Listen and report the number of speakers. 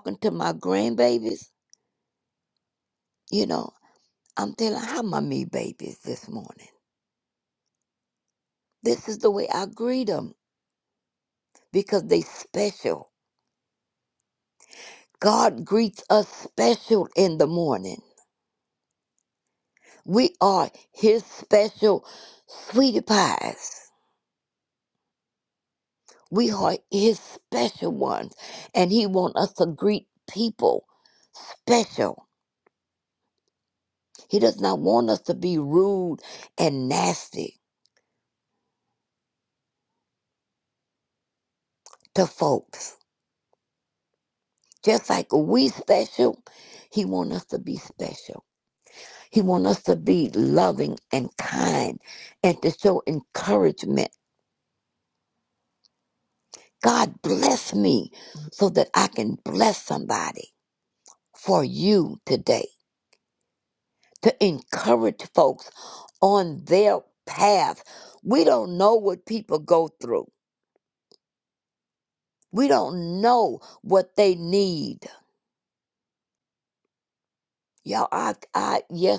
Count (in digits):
1